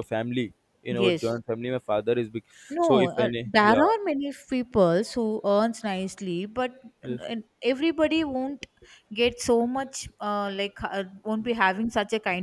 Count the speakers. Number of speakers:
2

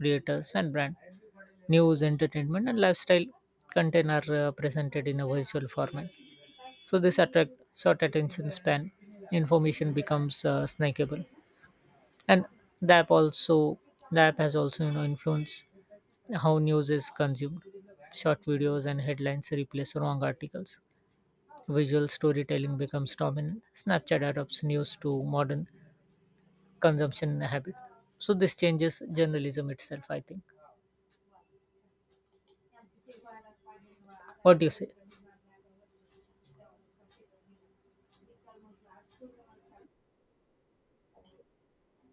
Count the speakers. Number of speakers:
1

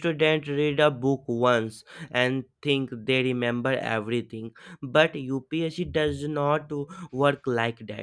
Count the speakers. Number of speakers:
1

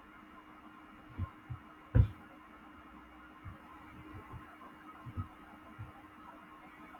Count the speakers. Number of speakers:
0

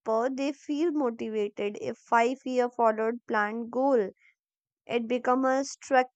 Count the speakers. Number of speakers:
1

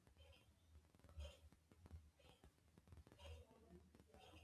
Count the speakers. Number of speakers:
0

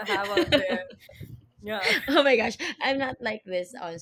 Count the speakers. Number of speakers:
2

